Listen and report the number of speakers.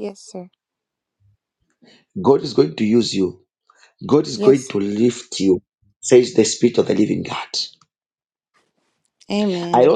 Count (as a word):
two